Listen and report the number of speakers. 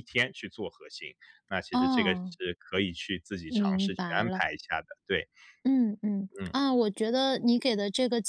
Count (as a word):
two